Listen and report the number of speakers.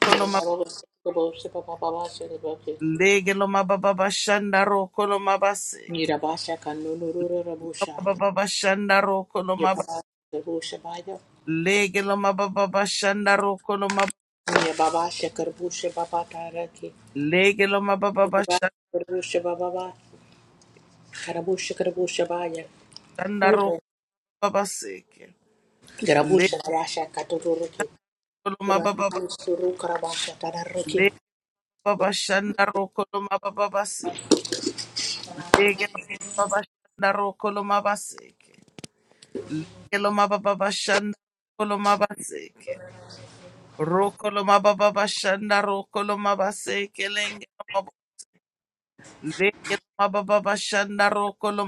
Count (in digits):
2